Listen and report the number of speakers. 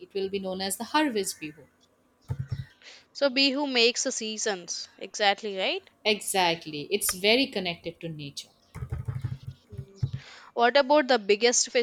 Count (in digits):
2